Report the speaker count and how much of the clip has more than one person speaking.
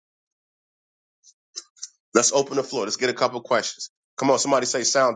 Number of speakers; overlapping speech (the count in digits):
1, no overlap